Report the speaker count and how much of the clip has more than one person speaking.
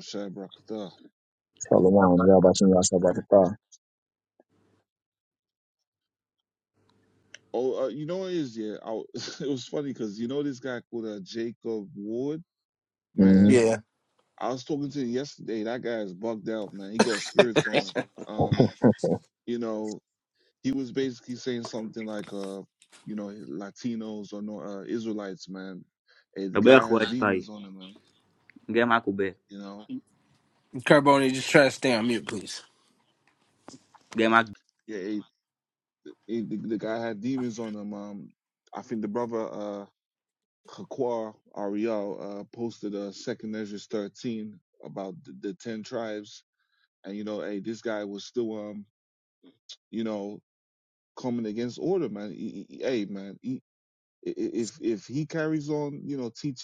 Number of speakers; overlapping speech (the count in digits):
4, about 2%